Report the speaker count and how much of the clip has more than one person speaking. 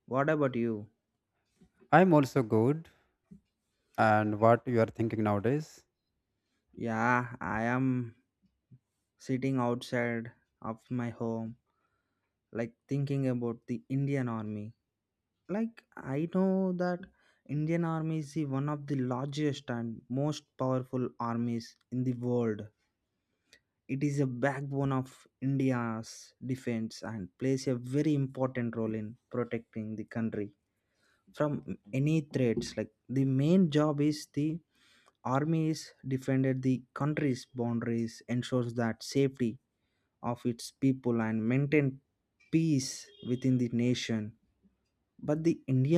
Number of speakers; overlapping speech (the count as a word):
two, no overlap